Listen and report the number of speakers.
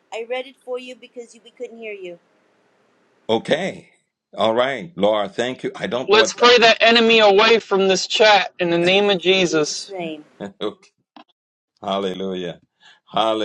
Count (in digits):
3